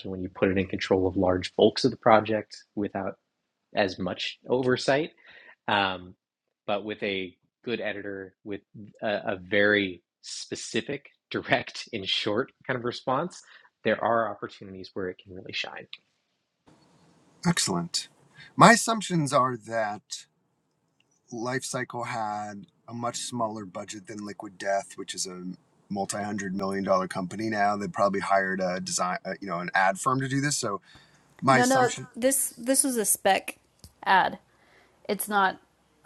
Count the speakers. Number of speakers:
three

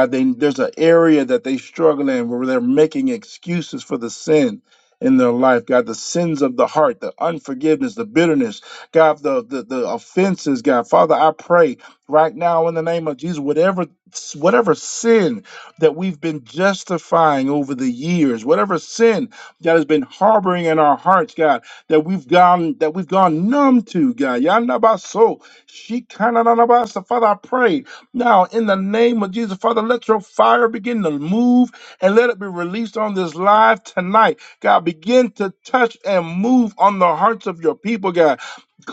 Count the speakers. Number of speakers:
one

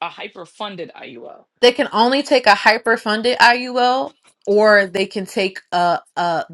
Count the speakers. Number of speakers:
two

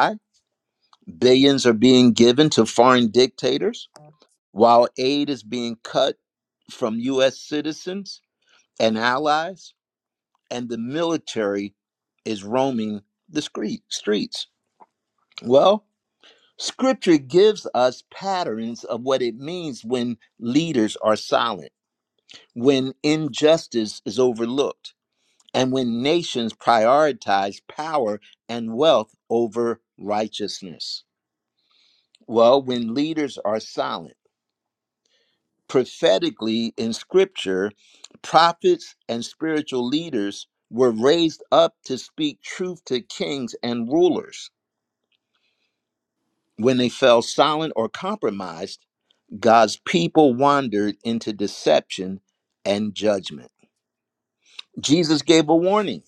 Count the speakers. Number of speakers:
one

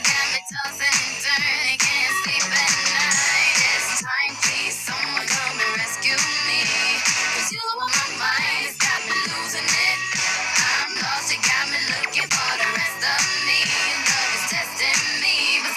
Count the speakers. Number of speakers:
one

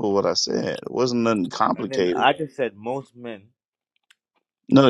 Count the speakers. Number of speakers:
two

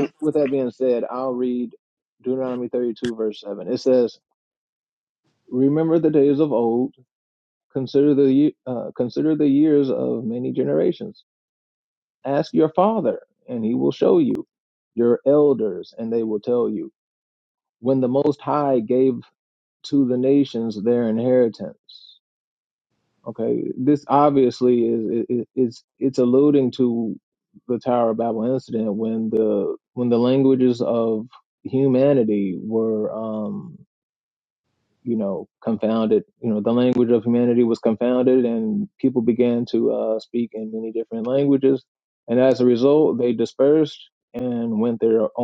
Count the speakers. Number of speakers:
one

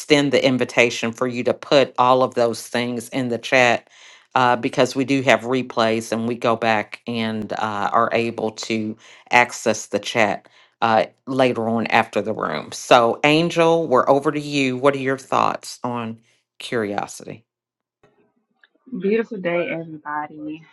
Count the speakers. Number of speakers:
two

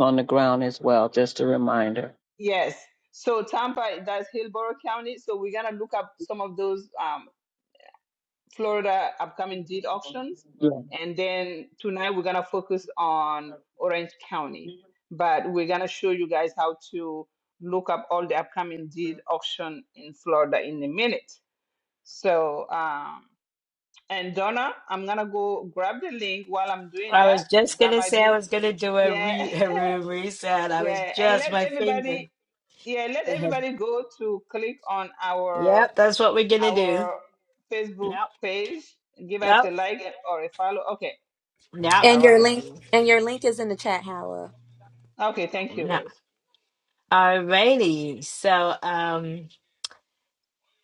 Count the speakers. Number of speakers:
four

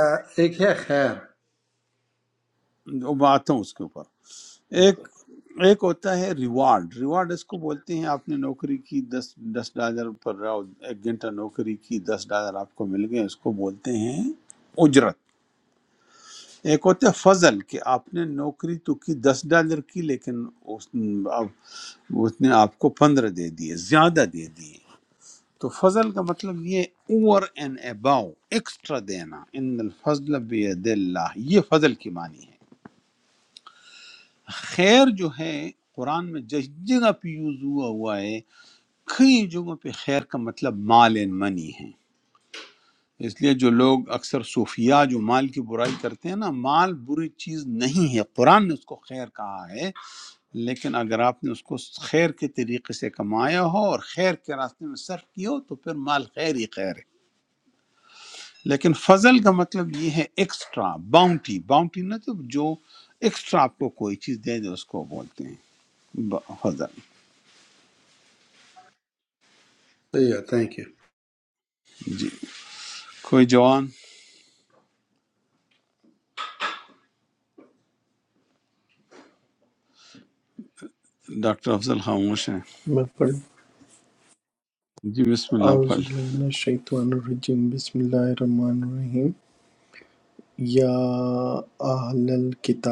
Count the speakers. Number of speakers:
three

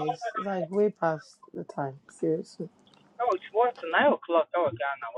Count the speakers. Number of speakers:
two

